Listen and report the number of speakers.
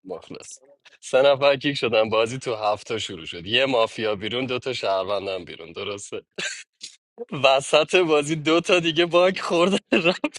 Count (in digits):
1